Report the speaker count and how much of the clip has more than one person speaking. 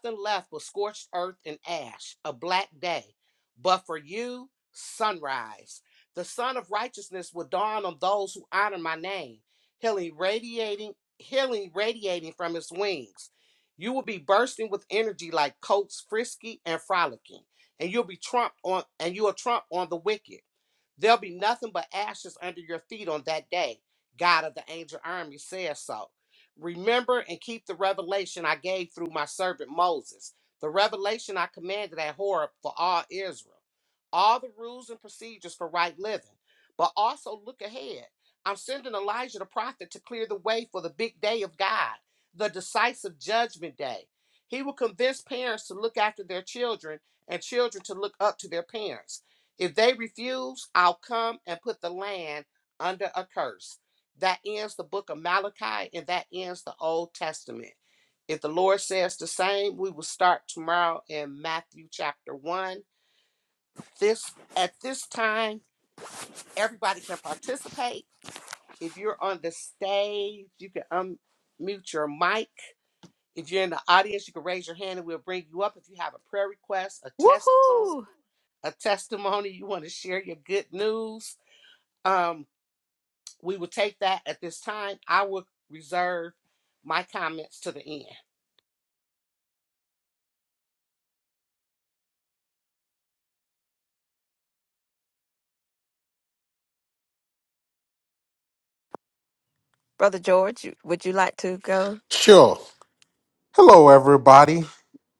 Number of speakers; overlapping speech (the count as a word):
three, about 1%